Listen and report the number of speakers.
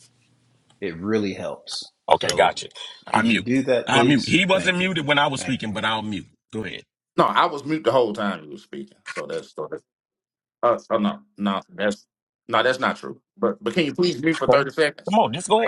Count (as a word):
three